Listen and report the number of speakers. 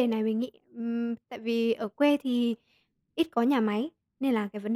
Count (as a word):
one